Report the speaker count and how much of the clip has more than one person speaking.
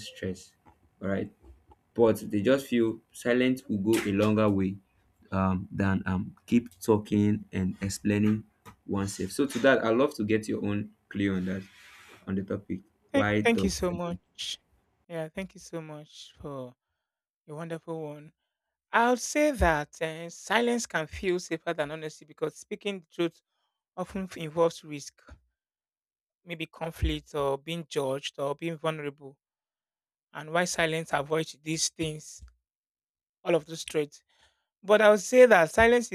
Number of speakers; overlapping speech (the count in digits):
2, about 3%